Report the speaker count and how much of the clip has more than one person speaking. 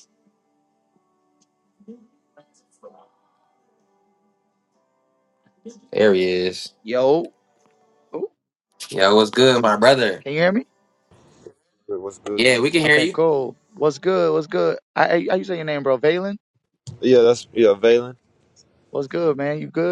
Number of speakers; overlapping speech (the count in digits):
3, about 2%